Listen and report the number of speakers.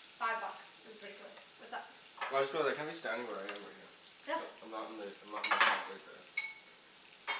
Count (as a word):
two